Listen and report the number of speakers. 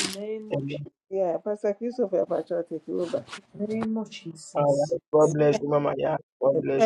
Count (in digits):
3